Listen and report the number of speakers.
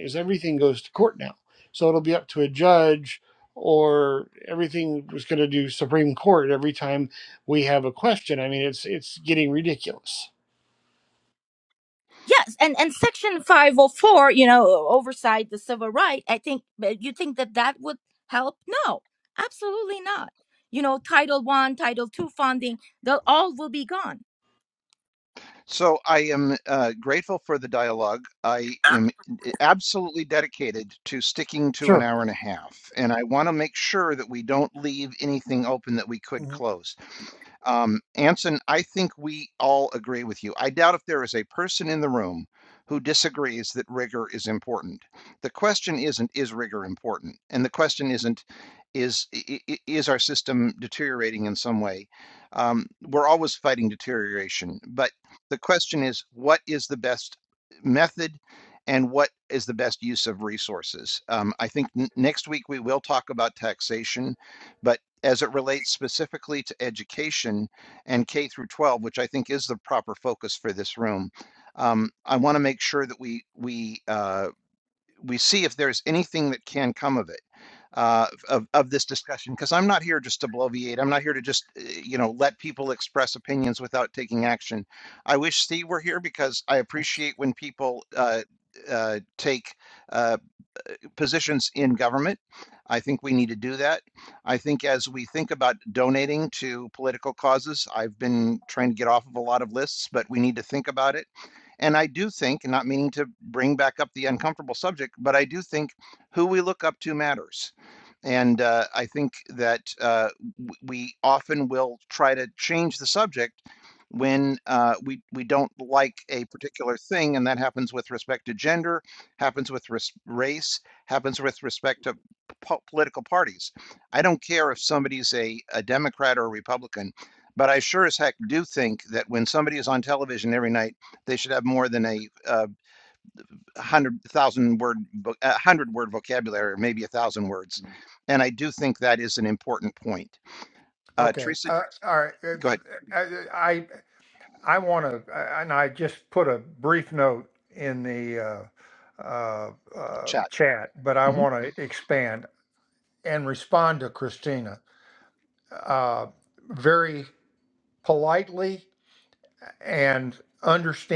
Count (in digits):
4